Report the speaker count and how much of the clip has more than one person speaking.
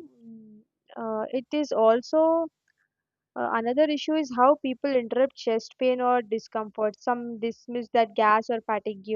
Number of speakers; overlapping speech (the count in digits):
1, no overlap